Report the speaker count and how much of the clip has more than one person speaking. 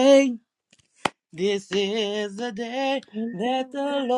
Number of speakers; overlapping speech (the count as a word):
one, no overlap